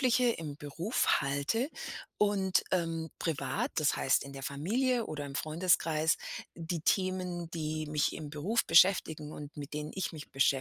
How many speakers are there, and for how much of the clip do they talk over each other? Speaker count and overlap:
one, no overlap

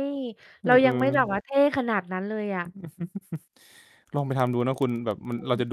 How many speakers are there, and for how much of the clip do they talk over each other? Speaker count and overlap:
two, about 11%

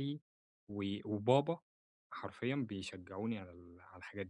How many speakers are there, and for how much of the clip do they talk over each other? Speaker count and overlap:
one, no overlap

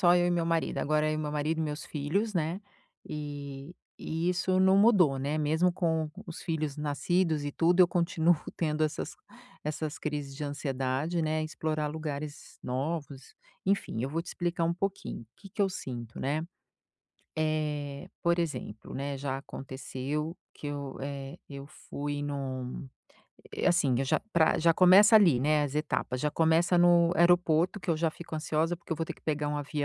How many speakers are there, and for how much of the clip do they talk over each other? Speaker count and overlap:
one, no overlap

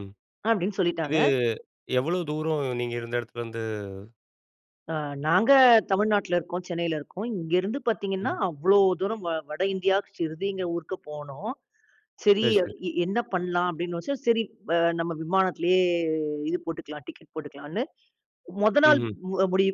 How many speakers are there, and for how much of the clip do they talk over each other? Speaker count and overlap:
two, about 4%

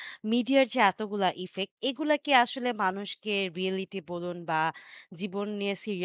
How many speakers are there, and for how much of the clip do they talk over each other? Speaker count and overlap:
one, no overlap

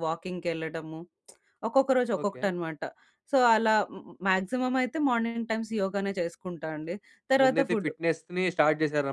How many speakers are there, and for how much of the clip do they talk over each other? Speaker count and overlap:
two, about 10%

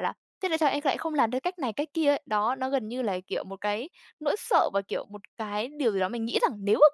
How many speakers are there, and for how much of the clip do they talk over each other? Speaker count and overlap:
one, no overlap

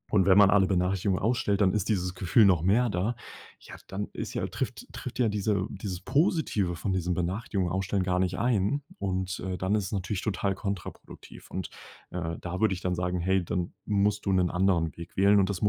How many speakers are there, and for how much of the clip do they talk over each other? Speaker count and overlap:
one, no overlap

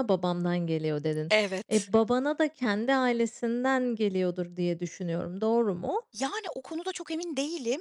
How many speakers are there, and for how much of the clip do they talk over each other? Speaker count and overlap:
two, about 2%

